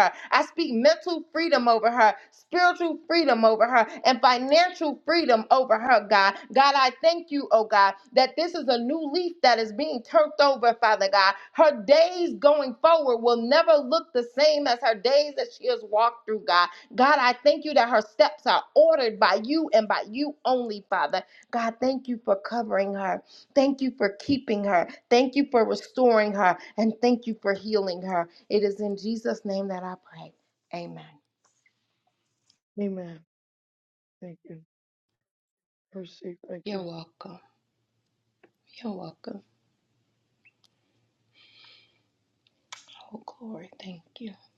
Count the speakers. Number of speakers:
2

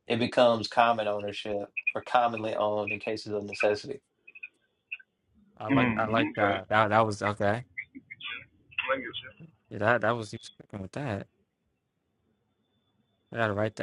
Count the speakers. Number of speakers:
3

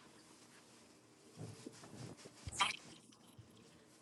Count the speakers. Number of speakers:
0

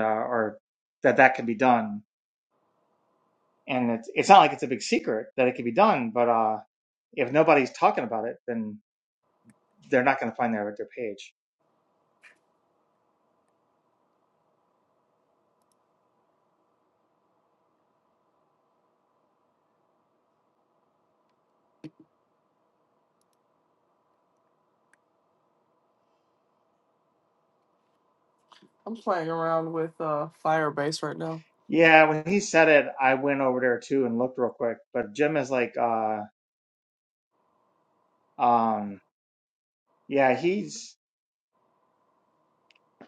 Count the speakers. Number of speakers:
2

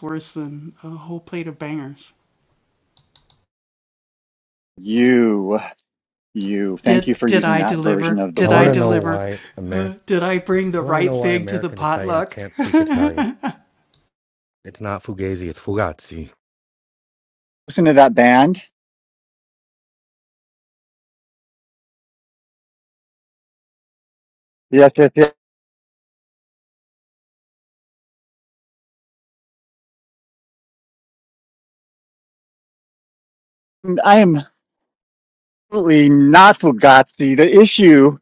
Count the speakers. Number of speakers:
3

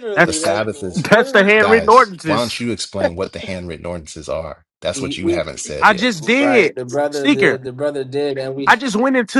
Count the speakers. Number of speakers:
3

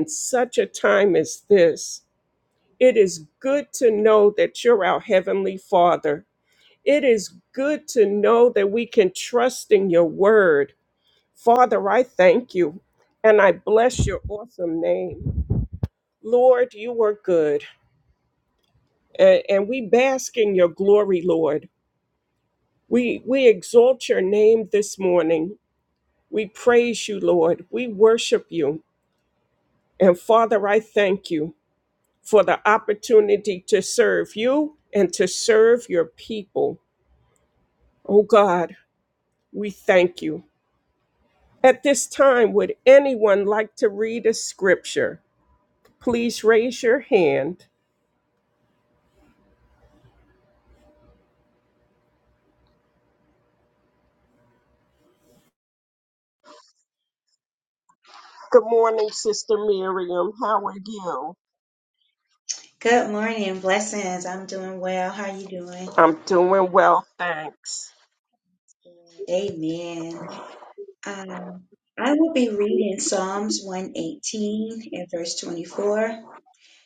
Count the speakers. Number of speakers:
2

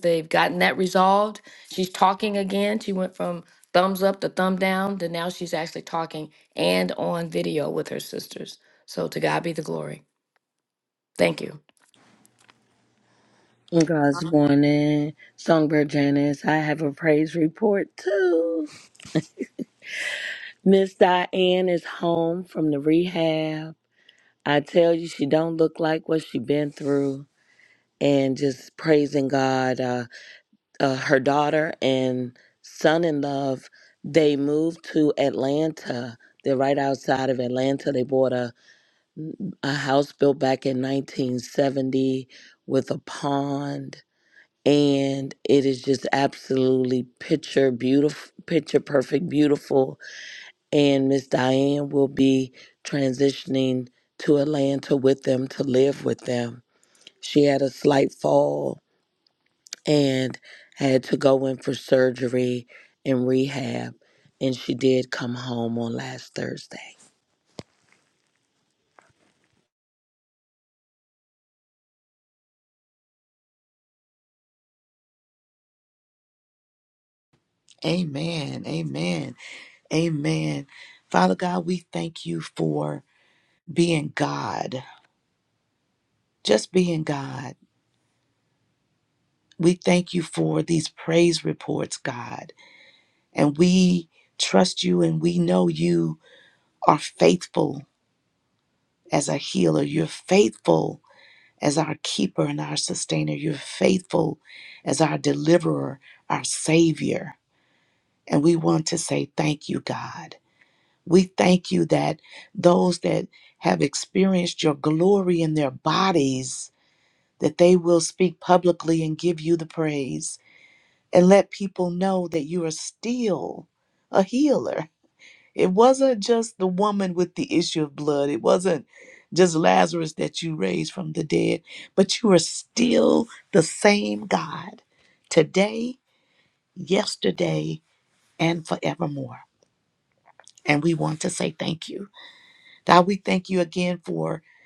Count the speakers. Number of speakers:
3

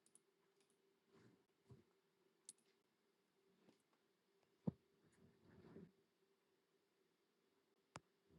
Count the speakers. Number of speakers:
0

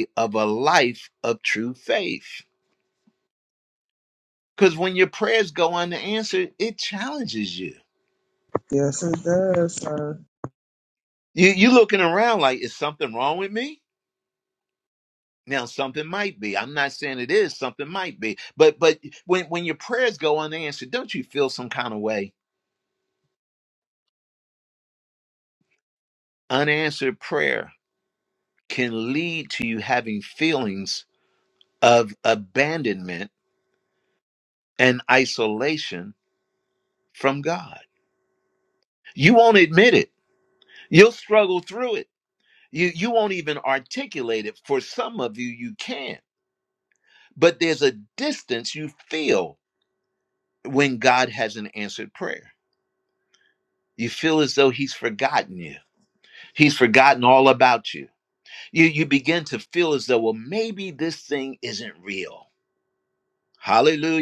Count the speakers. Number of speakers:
2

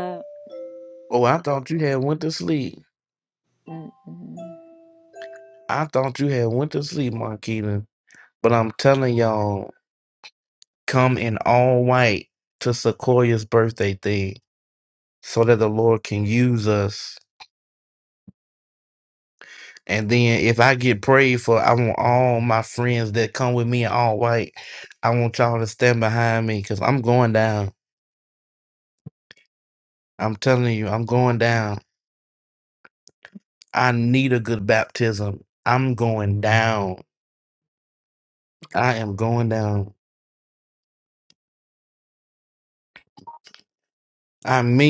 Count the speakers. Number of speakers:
2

